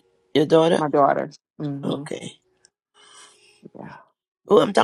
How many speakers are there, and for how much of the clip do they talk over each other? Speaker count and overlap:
2, about 6%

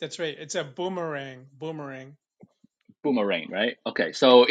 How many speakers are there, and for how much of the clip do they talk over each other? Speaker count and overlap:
2, no overlap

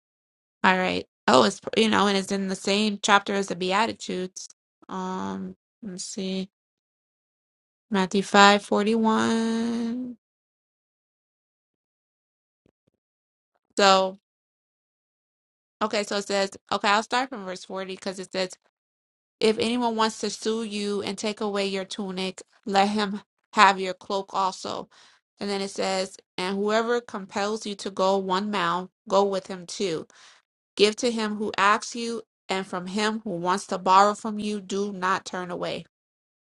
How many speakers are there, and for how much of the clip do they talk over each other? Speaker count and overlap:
1, no overlap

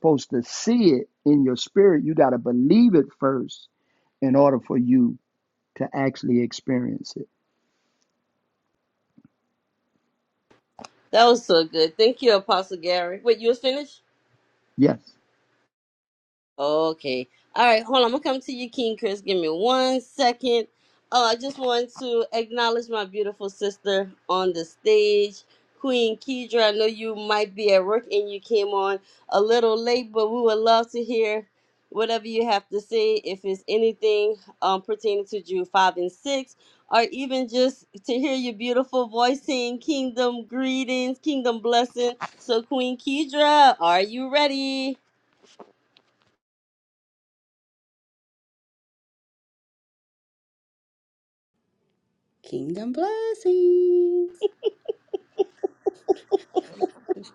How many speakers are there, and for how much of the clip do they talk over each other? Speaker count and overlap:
3, no overlap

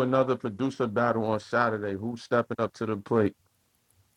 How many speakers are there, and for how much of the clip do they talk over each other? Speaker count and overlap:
1, no overlap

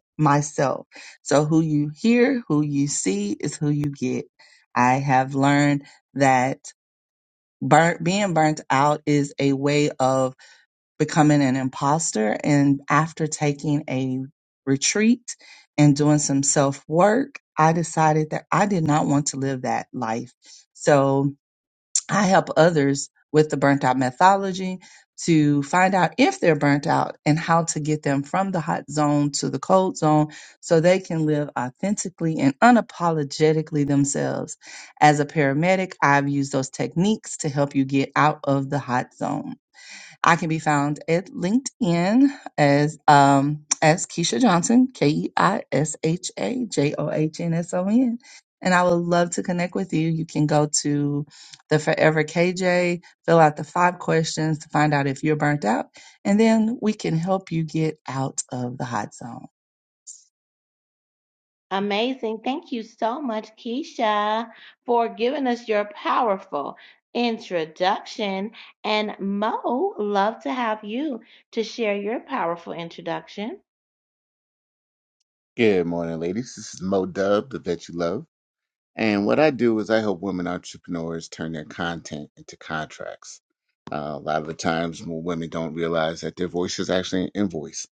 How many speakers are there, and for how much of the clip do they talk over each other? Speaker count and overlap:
3, no overlap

